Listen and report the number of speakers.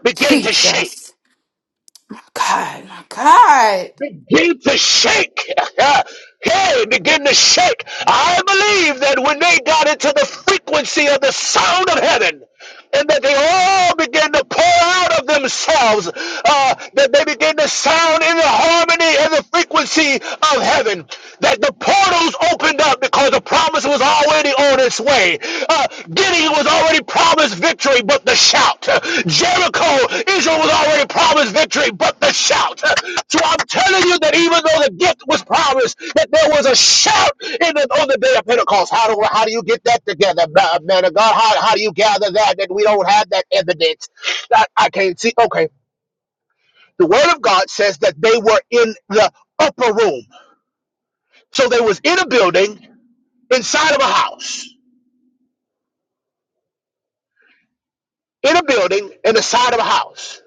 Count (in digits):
2